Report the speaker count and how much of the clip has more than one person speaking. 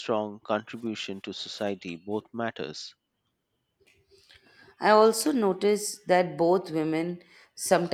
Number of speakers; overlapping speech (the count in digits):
2, no overlap